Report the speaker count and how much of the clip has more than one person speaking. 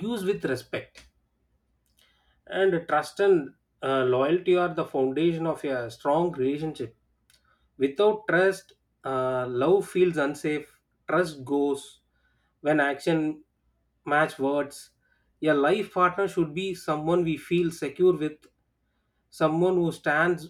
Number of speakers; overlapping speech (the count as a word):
one, no overlap